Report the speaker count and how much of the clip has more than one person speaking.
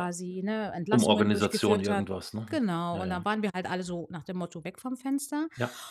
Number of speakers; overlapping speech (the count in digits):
2, about 27%